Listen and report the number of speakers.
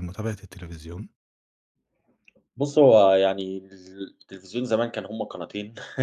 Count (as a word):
two